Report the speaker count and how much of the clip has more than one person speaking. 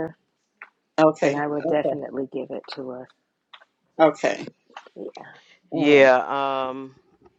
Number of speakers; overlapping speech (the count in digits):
3, about 15%